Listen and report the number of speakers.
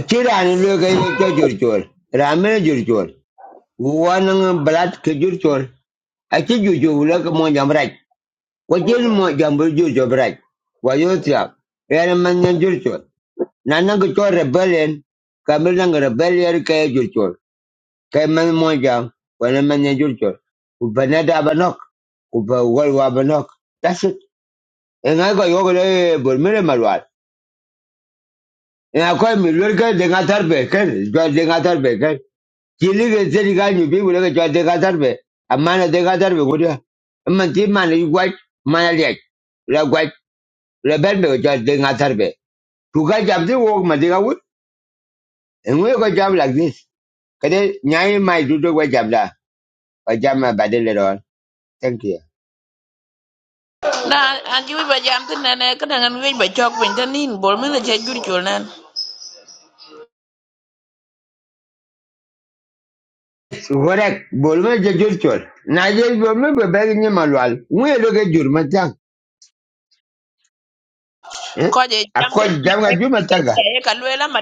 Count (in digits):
2